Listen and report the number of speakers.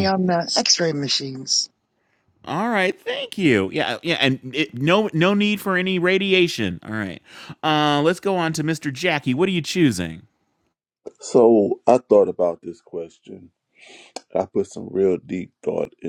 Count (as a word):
three